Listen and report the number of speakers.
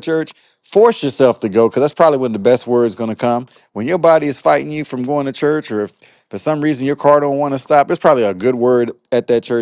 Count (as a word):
one